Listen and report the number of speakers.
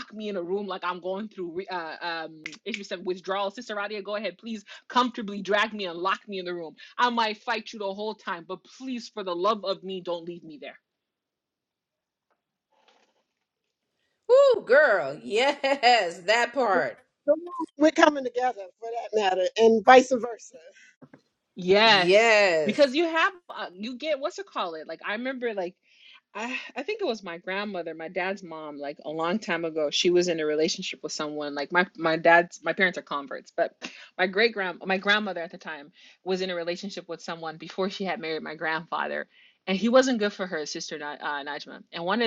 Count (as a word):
three